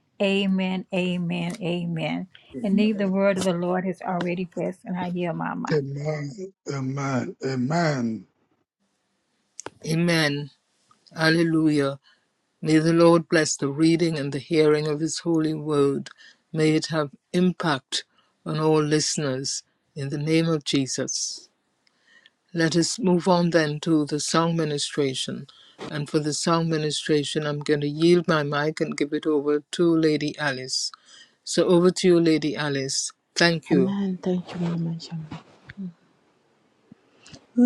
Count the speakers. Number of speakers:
4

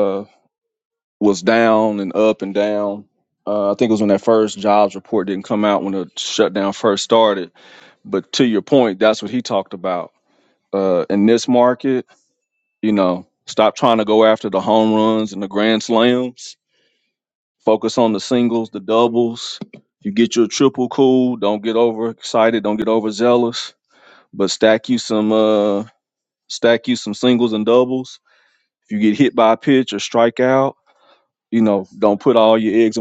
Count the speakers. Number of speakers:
1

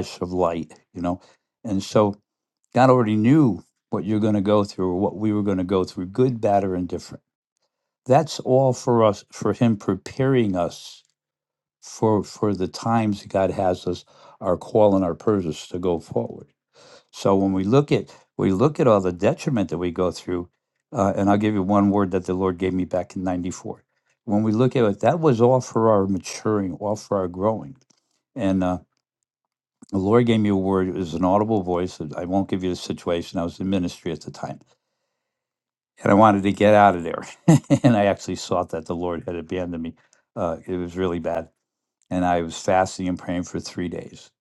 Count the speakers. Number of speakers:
1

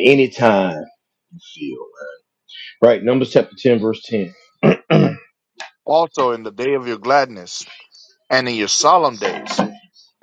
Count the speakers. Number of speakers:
2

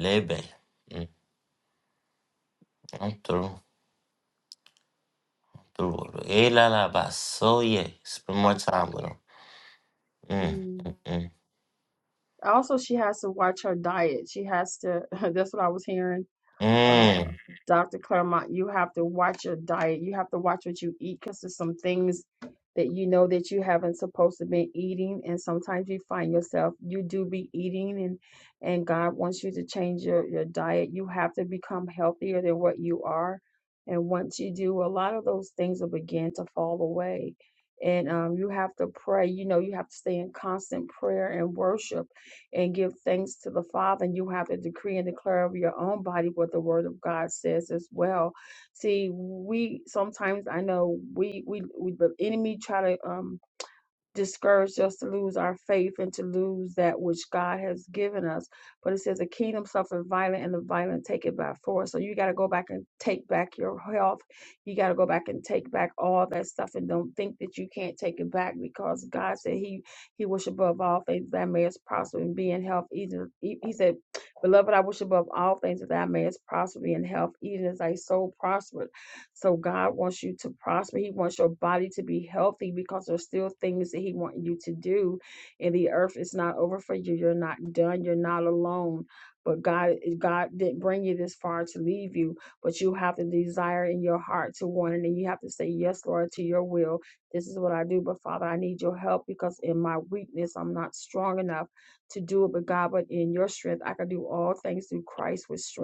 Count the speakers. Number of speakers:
2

